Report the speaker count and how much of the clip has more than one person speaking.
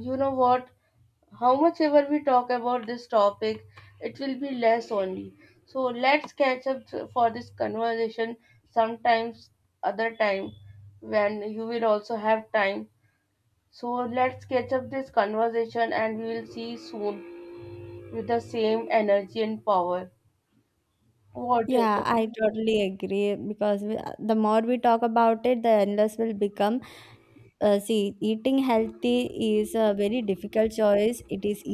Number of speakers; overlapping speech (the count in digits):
2, about 1%